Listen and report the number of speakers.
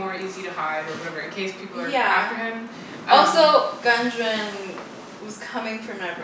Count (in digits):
2